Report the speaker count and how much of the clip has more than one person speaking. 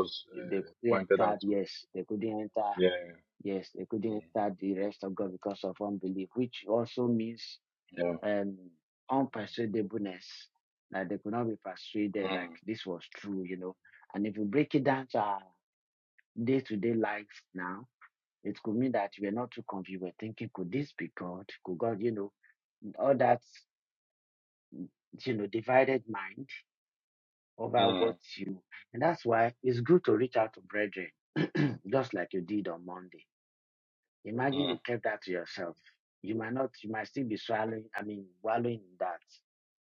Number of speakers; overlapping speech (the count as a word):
two, about 5%